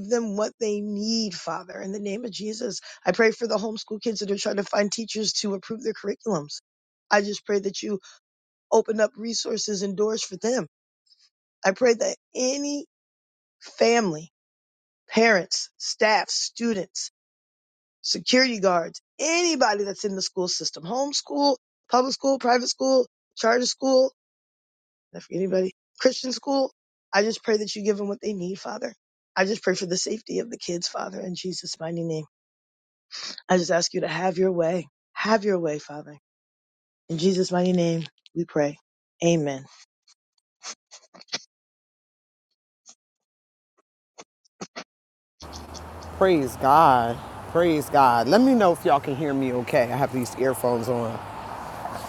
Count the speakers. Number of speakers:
2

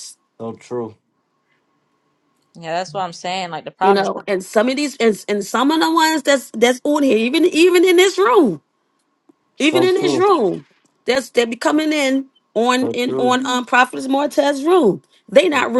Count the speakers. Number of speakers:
3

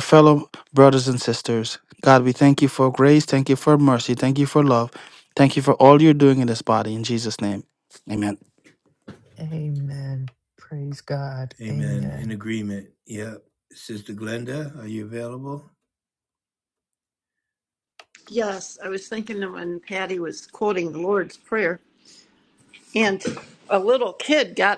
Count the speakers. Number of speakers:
4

